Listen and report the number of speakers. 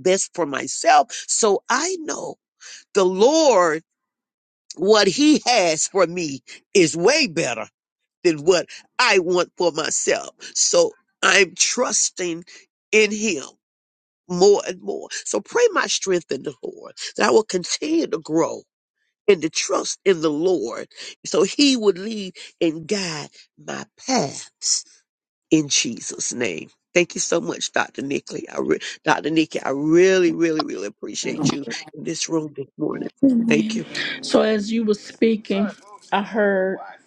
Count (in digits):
2